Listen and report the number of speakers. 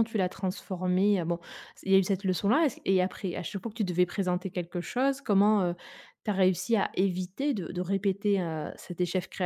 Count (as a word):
one